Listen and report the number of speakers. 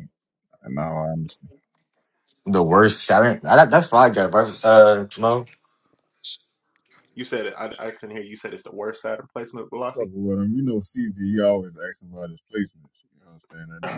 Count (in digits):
3